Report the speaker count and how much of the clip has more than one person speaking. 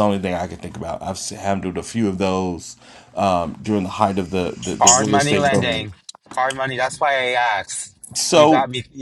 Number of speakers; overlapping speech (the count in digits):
2, about 15%